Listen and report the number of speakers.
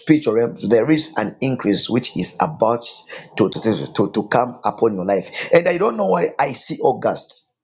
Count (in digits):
1